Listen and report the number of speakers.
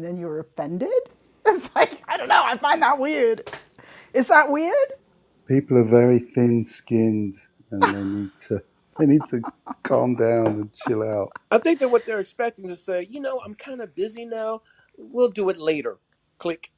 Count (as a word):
three